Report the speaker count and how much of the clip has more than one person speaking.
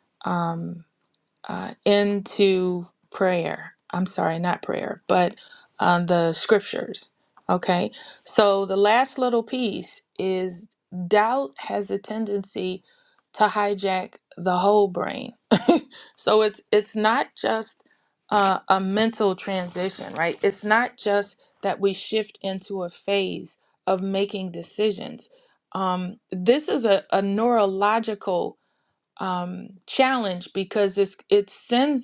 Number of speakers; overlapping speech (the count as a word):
one, no overlap